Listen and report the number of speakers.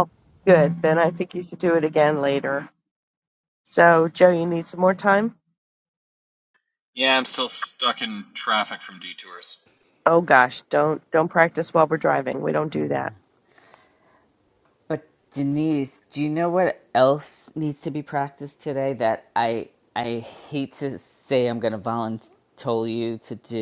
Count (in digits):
3